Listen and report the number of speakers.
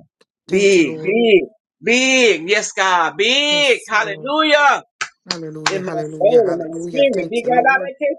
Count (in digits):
2